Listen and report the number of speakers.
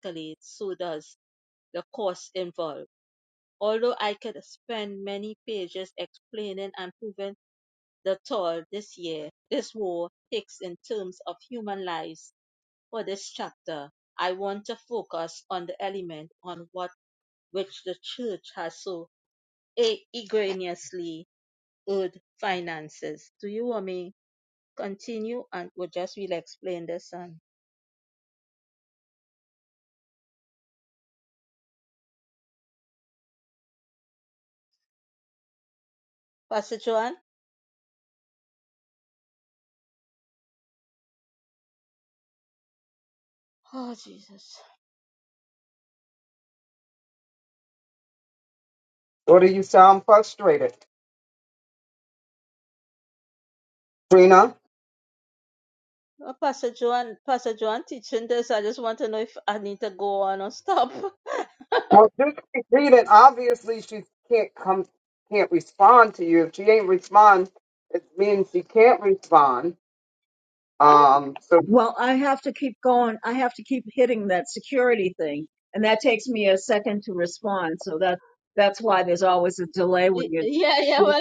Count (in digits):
3